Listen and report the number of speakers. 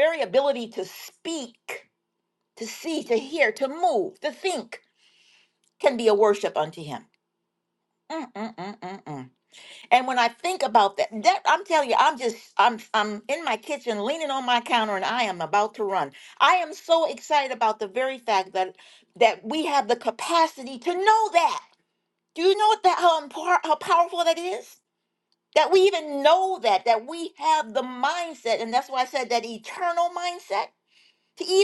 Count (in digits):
1